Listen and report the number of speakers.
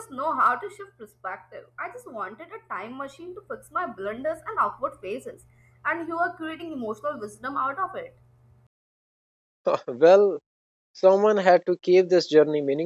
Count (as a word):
two